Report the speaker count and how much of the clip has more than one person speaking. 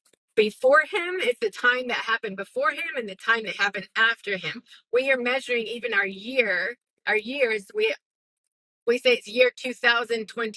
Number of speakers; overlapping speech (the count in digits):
1, no overlap